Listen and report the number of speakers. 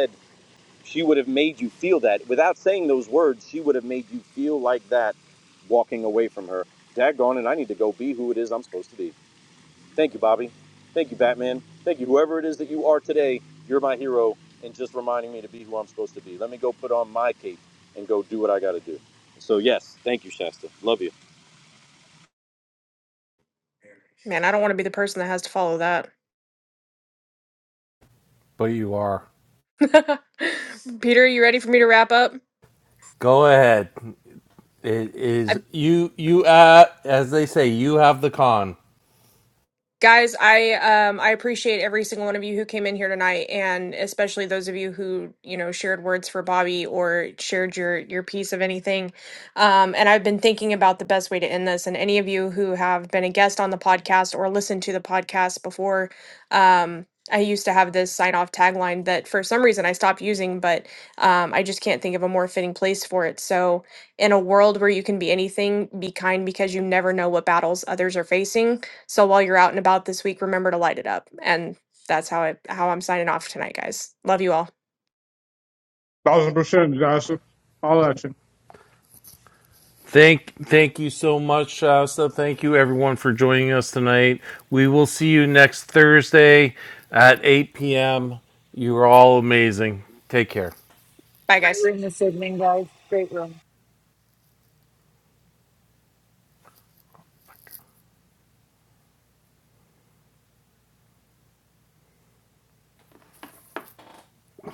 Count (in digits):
5